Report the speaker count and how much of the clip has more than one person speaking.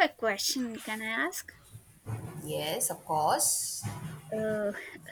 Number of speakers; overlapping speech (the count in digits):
2, no overlap